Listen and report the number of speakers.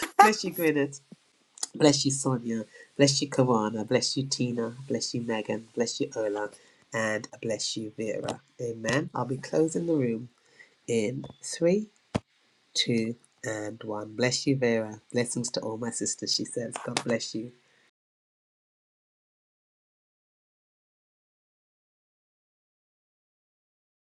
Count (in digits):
1